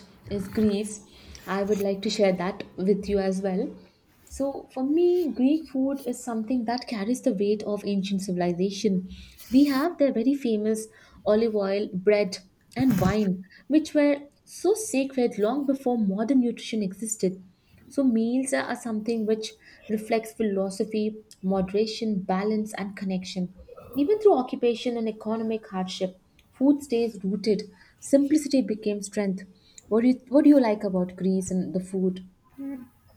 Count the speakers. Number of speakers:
one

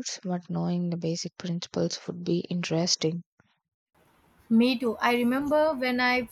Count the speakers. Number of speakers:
two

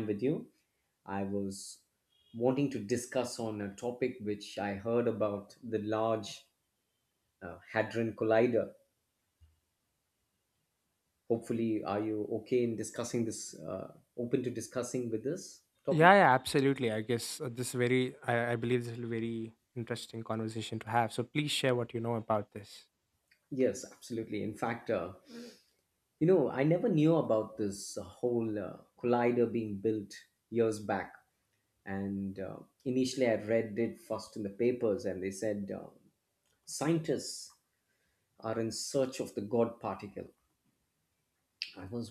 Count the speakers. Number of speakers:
two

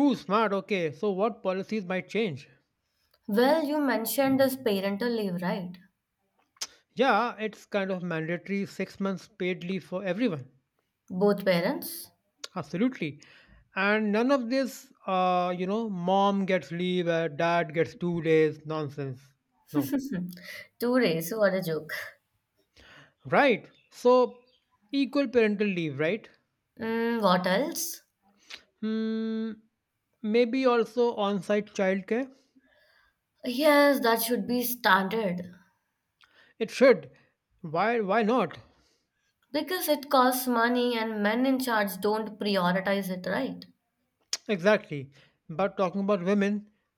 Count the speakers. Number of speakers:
two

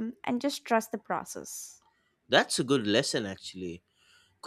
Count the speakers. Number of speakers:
two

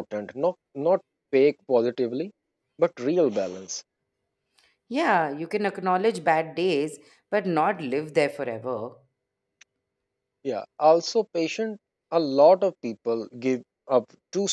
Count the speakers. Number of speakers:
two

